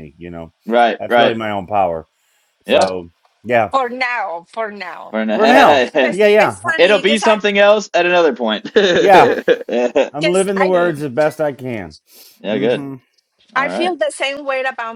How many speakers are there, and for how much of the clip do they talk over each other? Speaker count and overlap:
three, about 26%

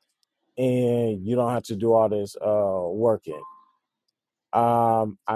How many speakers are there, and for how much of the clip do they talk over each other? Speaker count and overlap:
one, no overlap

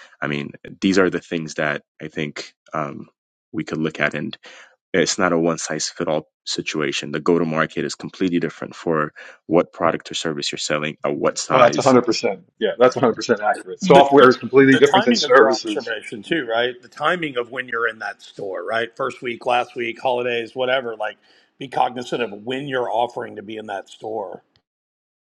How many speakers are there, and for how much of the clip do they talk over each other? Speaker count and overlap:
three, about 9%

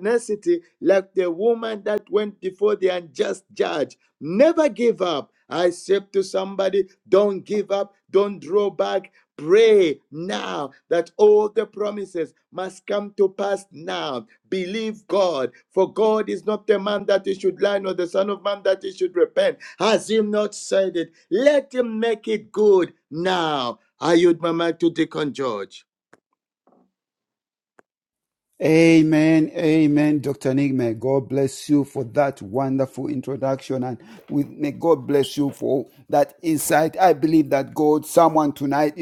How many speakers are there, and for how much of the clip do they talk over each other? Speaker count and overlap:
two, no overlap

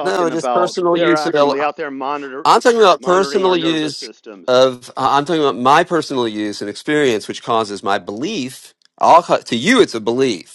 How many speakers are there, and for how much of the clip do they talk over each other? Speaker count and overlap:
two, about 25%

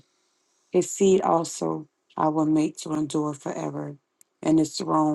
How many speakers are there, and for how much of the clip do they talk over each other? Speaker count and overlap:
one, no overlap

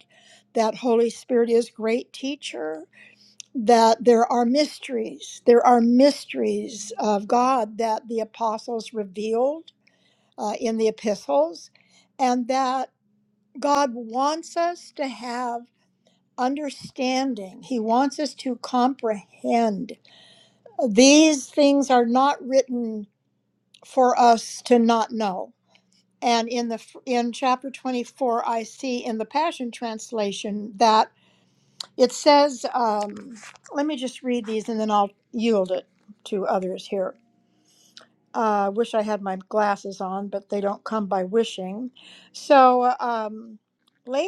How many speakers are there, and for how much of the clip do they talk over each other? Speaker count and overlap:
one, no overlap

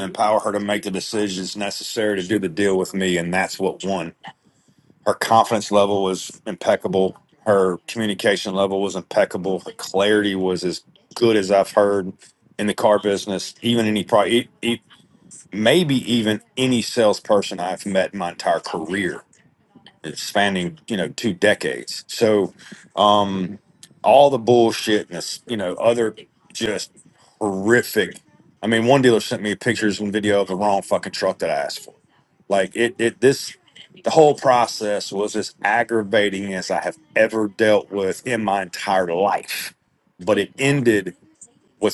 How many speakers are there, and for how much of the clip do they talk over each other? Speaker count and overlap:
one, no overlap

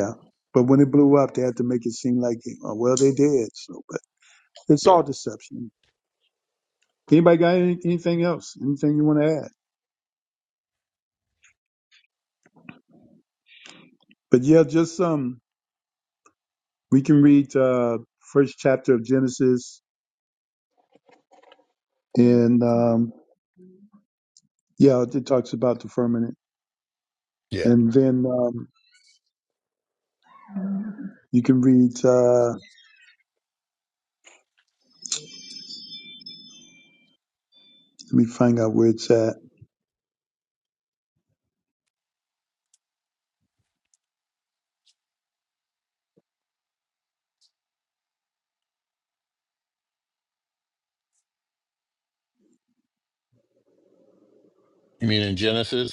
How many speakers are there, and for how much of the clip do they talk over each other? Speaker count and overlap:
two, about 1%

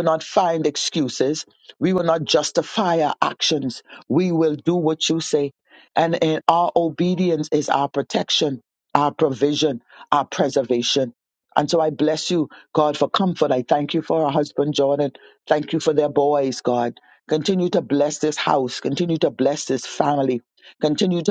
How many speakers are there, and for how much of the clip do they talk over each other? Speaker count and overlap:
one, no overlap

